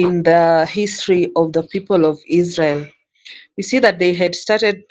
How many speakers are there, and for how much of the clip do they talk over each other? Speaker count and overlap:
1, no overlap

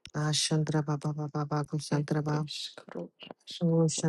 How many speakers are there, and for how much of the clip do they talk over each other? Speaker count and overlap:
2, about 17%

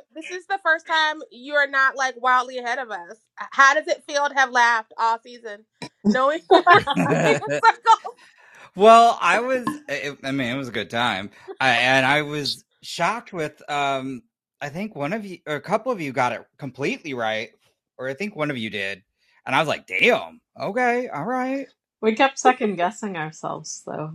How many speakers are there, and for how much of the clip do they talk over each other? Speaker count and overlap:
3, about 3%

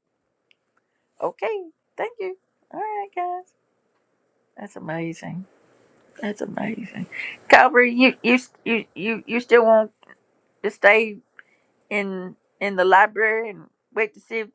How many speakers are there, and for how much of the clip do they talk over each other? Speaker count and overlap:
1, no overlap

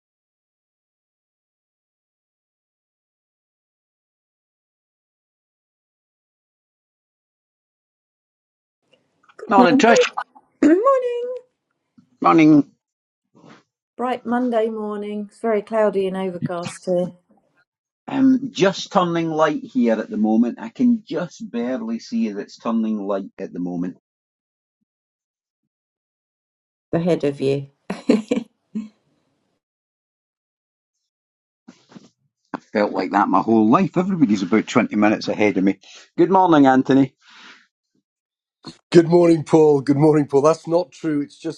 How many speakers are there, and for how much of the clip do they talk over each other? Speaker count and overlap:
3, about 1%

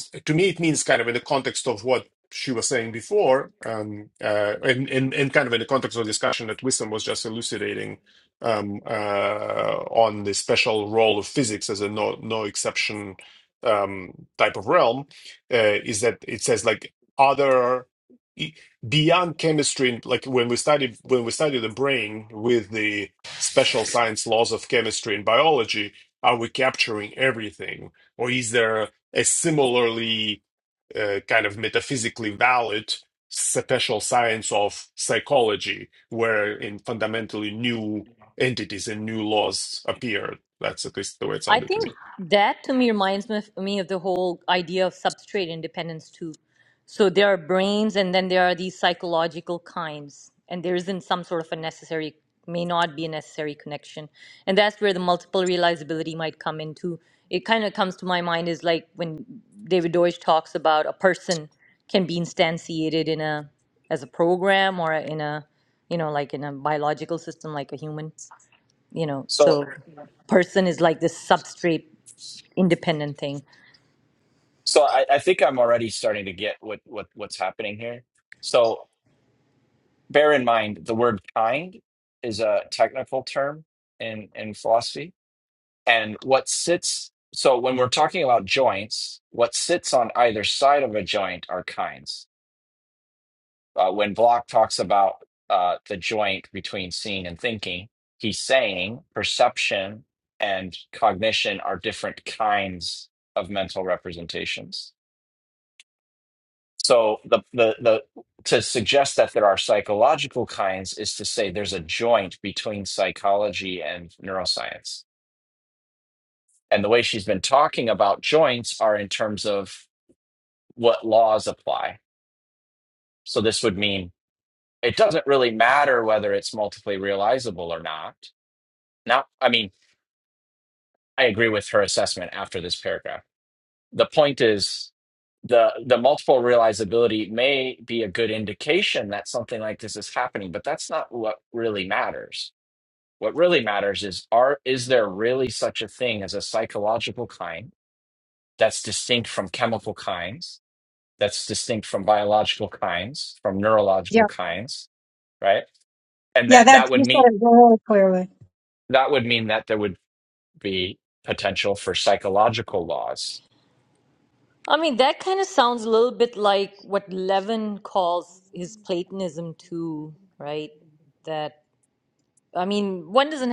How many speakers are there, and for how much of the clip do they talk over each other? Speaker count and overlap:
4, about 1%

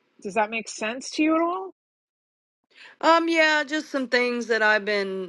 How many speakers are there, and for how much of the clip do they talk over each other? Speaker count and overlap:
2, no overlap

